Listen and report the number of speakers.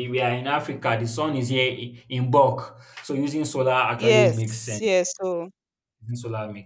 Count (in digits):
2